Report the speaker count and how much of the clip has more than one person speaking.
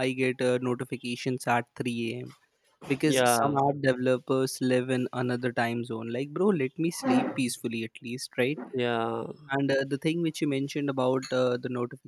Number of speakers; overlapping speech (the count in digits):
2, about 4%